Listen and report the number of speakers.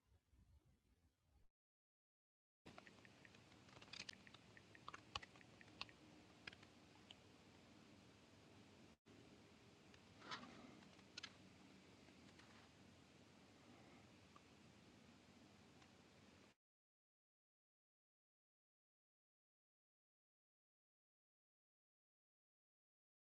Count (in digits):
0